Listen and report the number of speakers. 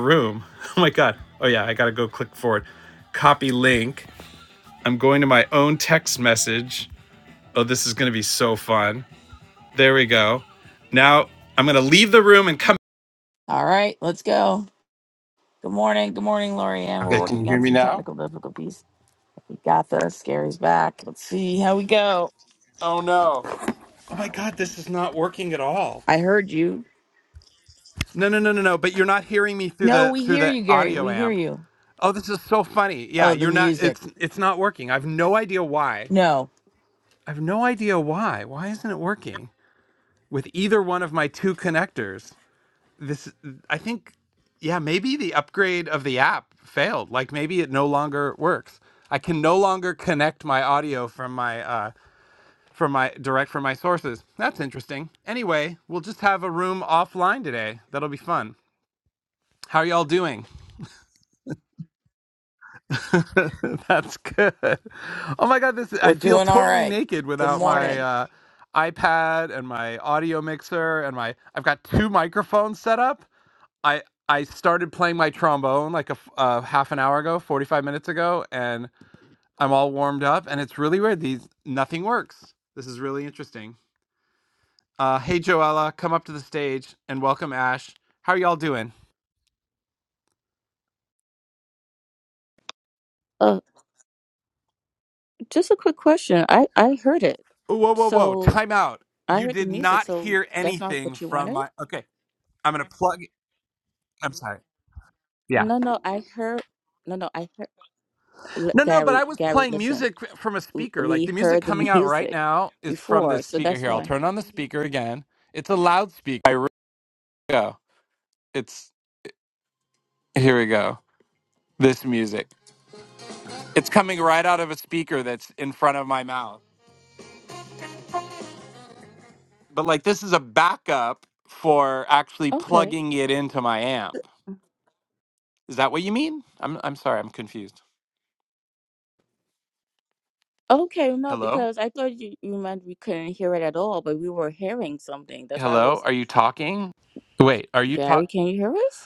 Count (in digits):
3